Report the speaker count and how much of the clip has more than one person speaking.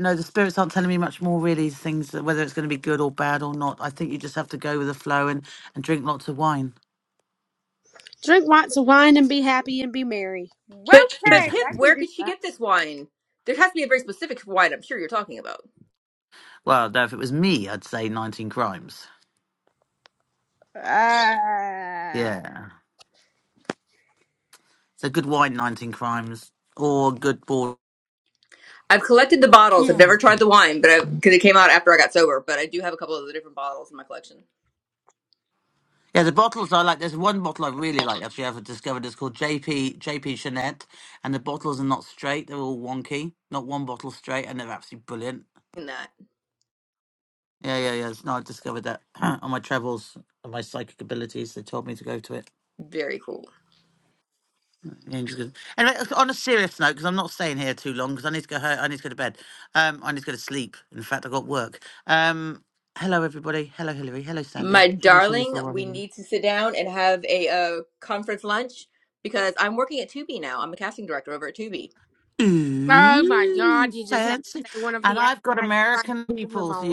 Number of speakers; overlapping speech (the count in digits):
3, about 8%